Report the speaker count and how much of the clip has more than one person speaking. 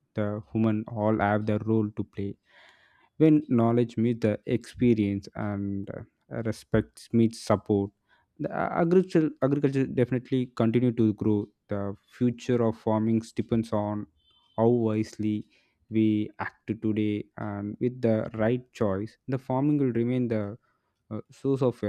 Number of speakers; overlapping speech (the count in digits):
1, no overlap